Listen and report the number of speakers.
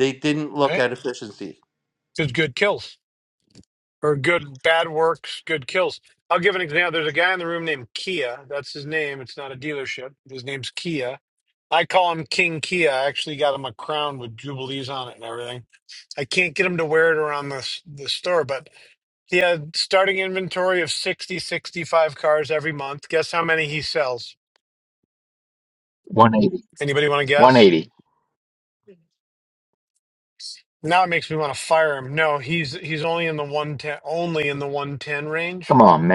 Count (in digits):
3